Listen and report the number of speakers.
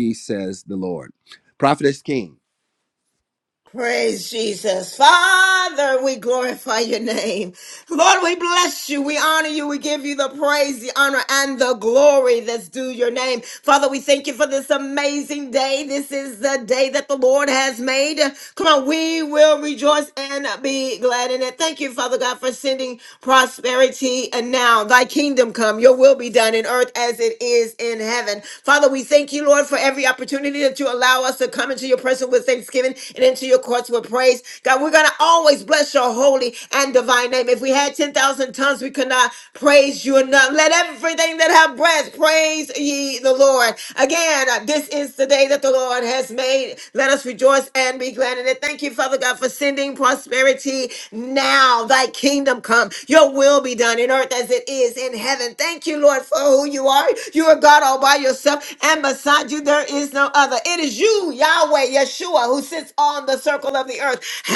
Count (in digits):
2